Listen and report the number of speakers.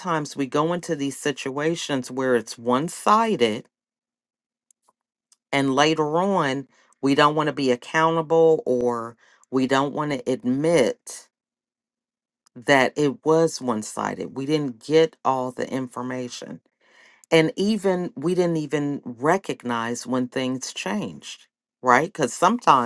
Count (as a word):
one